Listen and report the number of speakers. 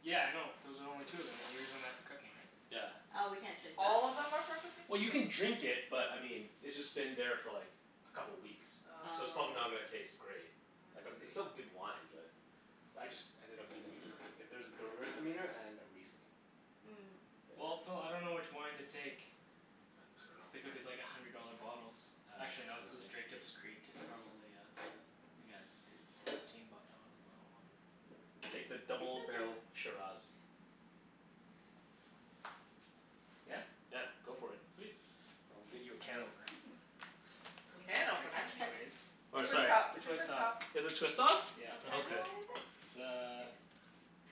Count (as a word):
four